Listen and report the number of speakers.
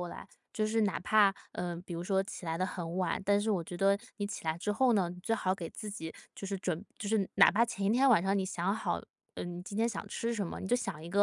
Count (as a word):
one